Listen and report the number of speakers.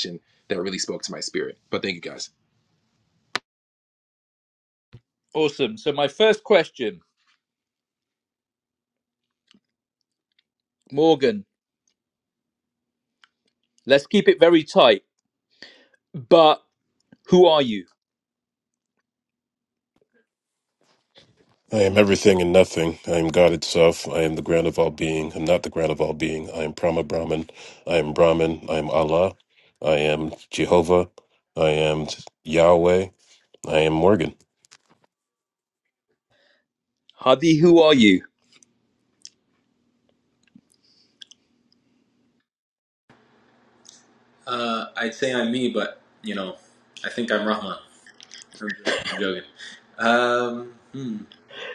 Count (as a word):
four